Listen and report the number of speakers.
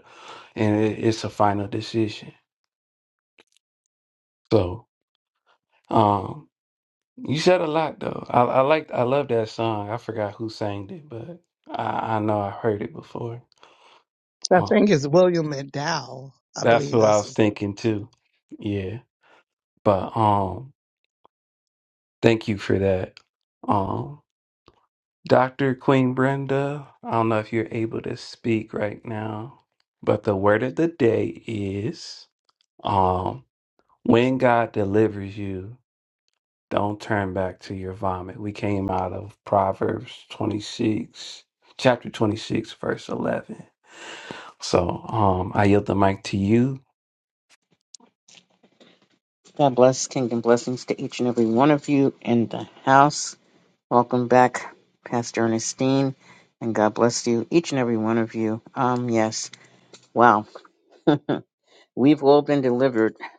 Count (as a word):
three